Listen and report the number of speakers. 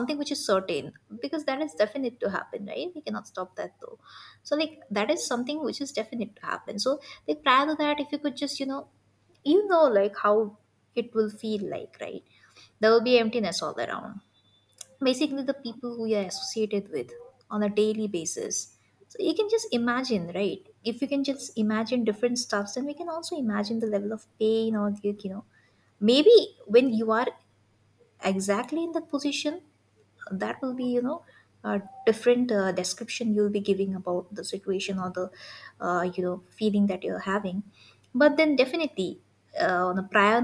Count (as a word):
one